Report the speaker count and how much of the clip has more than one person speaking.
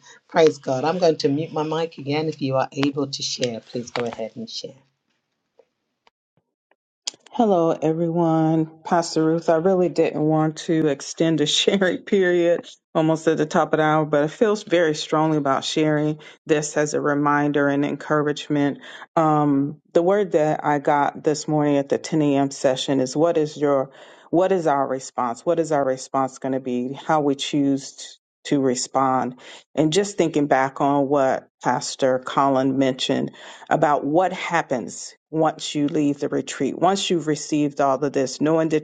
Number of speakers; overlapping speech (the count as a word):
two, no overlap